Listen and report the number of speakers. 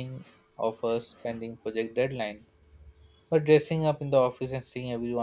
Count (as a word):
one